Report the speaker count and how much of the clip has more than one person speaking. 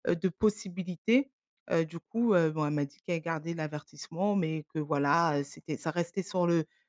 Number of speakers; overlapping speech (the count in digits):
1, no overlap